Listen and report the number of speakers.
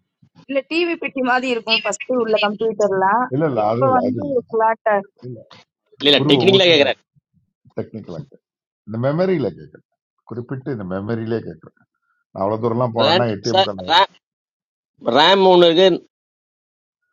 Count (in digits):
3